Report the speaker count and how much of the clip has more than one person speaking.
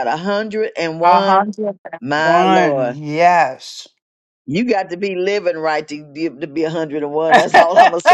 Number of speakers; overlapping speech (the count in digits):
2, about 13%